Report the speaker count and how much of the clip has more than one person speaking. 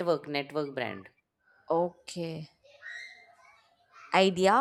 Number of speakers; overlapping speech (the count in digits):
2, no overlap